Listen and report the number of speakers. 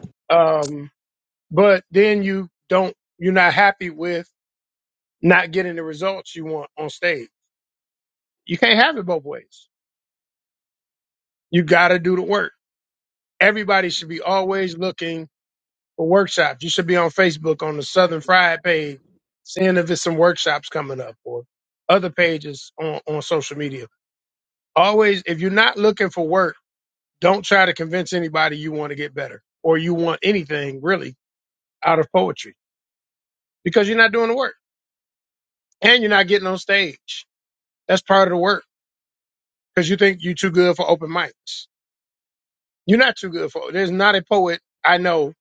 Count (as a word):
one